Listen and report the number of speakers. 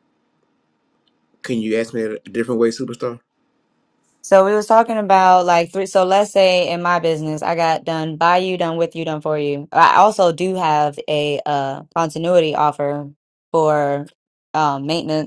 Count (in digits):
2